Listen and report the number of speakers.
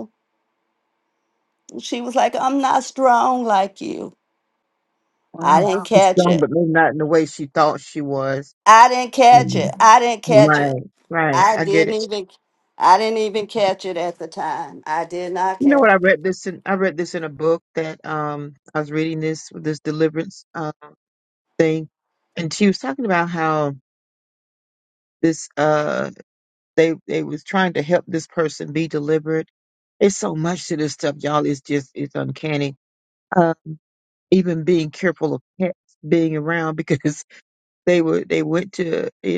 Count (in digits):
2